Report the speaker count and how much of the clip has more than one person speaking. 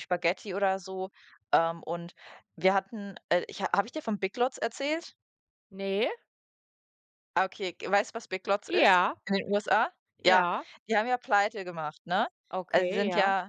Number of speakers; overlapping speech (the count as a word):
two, about 7%